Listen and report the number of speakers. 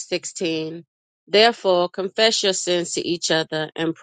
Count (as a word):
one